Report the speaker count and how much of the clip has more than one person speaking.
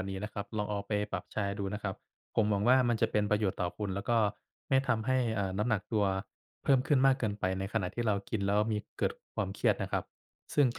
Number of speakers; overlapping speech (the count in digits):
1, no overlap